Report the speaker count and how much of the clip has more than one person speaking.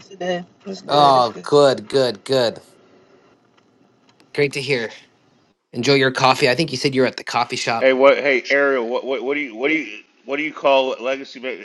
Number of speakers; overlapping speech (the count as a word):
three, about 5%